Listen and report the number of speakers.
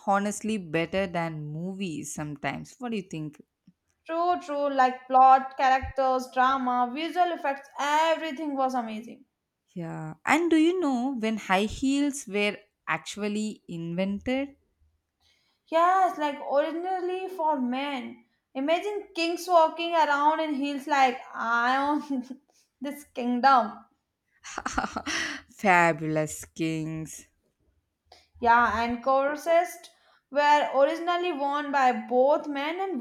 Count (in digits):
2